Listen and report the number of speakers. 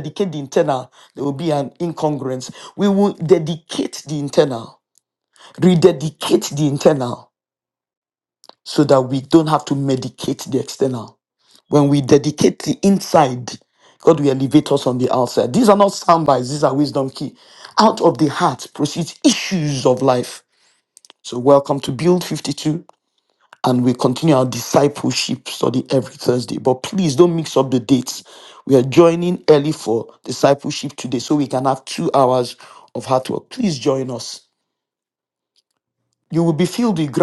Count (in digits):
1